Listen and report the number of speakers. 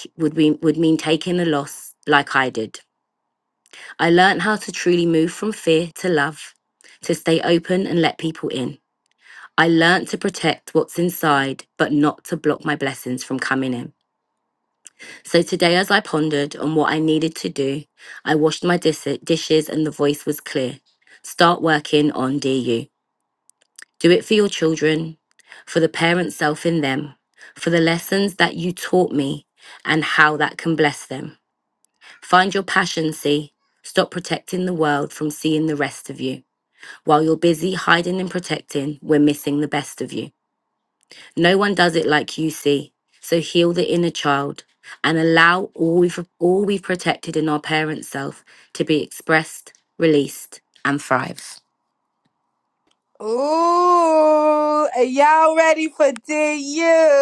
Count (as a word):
two